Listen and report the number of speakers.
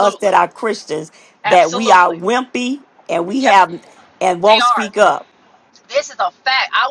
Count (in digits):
2